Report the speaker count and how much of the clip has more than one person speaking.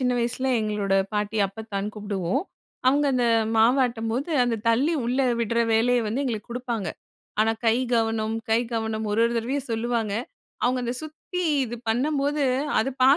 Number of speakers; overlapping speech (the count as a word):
one, no overlap